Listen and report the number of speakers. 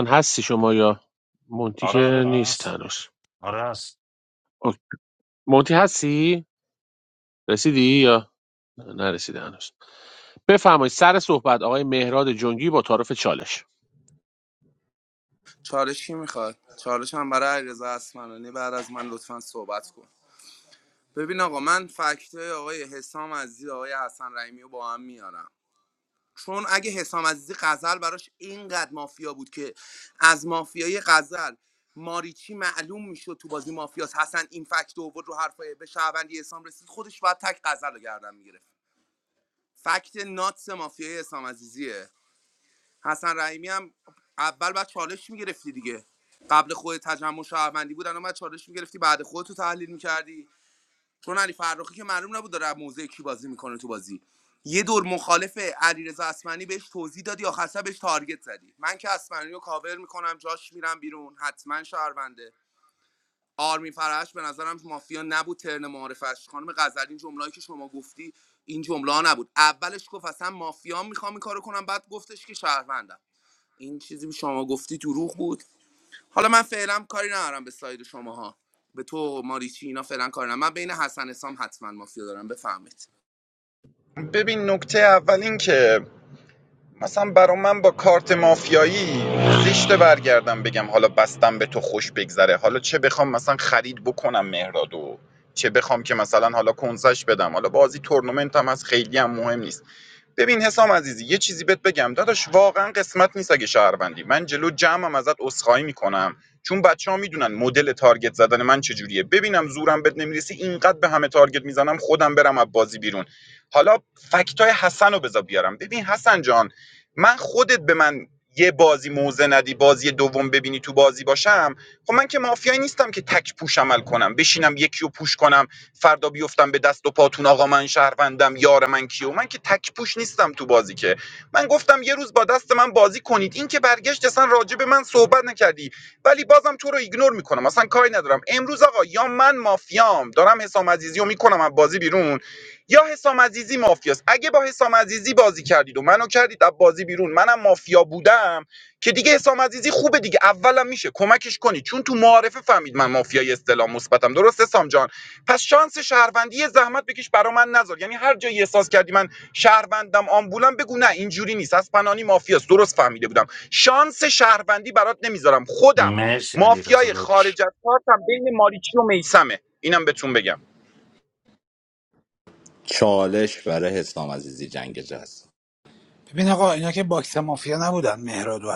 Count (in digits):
6